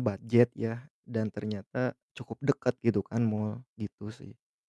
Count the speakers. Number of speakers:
1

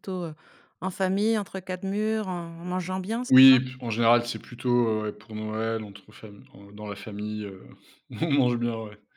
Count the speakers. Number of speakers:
2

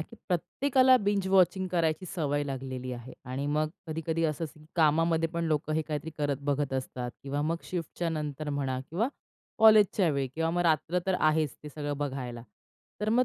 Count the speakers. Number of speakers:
1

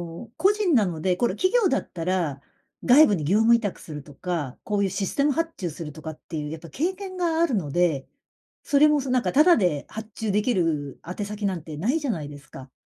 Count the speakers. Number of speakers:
1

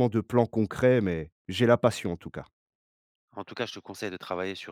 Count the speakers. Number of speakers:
2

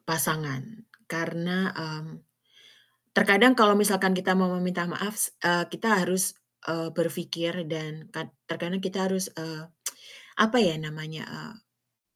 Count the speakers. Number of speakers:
1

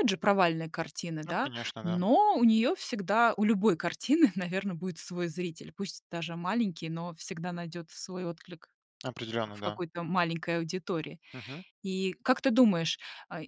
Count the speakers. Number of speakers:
2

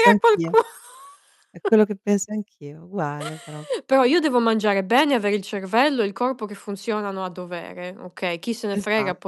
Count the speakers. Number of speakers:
2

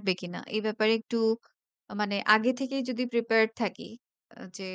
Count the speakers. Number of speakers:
1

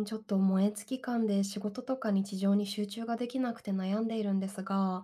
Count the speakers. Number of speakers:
1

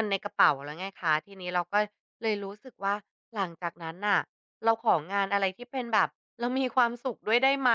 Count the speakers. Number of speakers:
1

